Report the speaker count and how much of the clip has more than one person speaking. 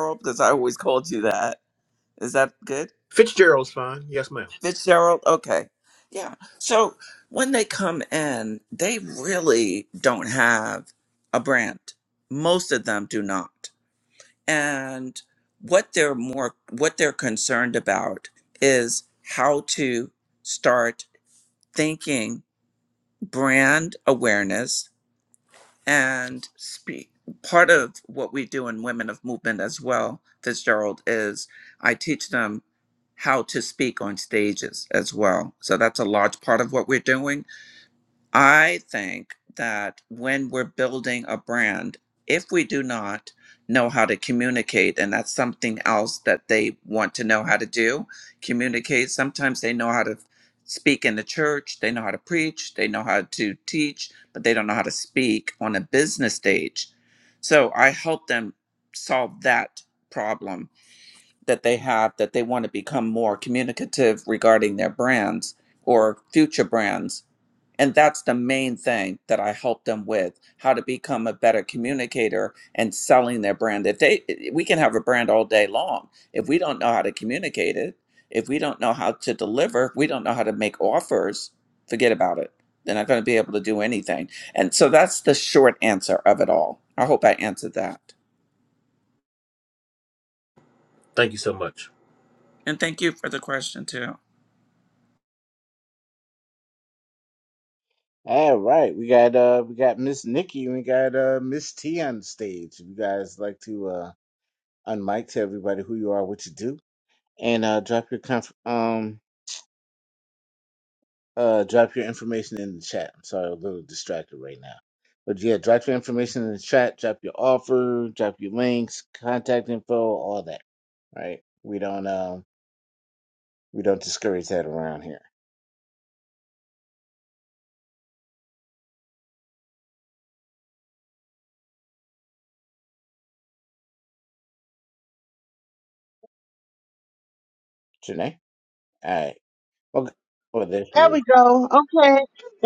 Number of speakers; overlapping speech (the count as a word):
four, under 1%